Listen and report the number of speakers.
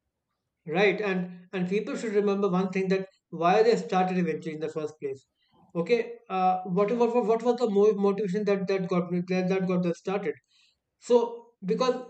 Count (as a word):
one